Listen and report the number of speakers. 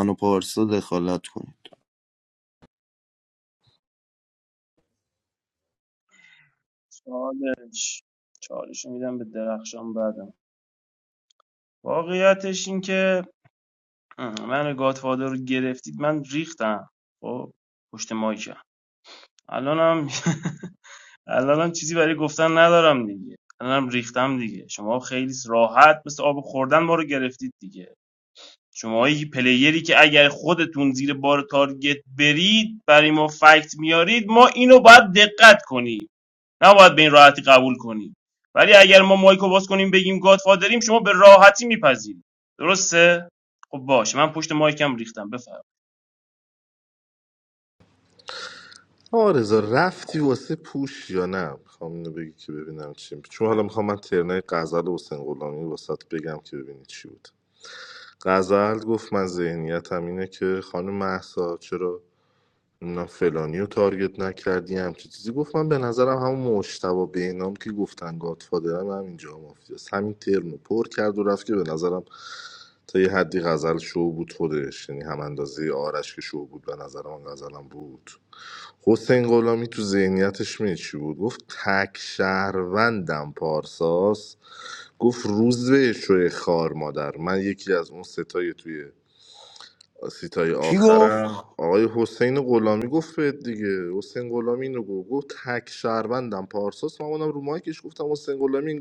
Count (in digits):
3